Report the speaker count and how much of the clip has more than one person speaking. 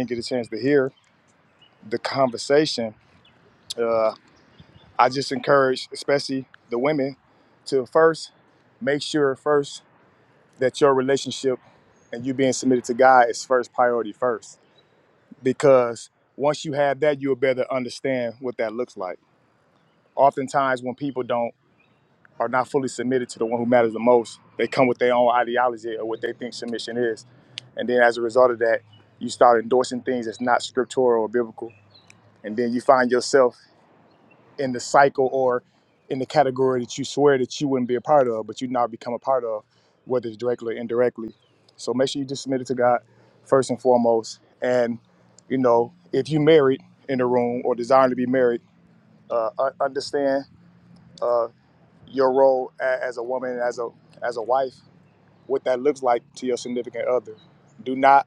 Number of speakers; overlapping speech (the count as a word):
one, no overlap